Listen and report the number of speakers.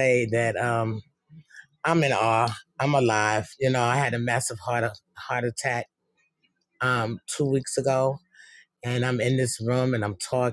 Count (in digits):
1